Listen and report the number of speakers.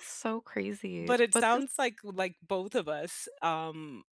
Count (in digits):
2